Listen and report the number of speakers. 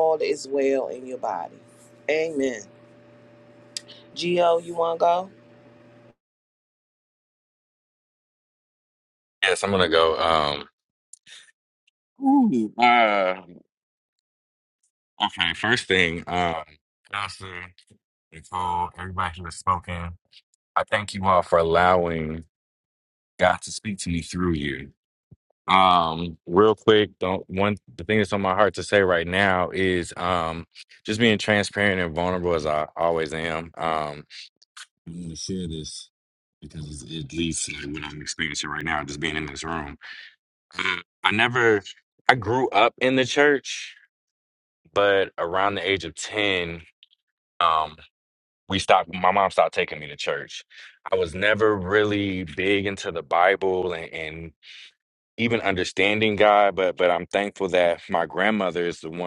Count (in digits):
2